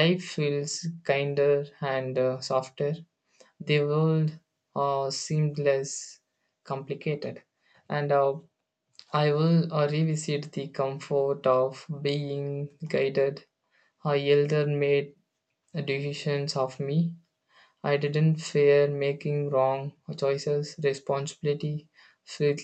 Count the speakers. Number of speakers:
one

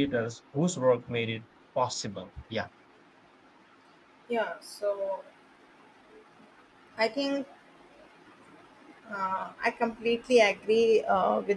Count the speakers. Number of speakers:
two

